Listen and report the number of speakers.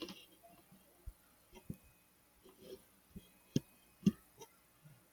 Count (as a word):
zero